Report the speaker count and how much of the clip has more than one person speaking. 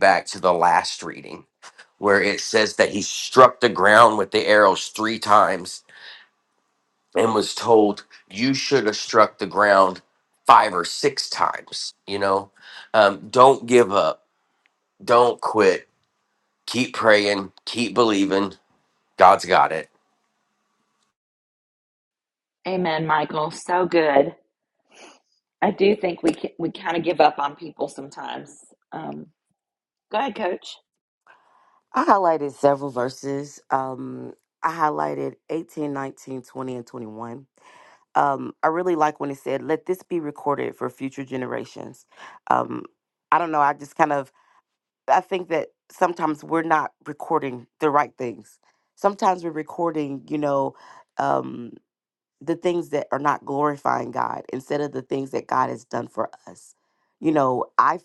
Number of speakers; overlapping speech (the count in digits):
3, no overlap